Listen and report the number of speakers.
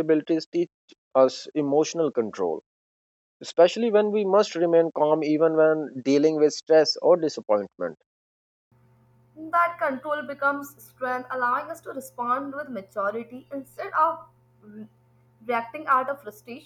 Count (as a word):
two